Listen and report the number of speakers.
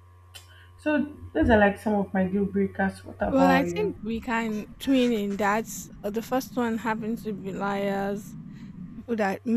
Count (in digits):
2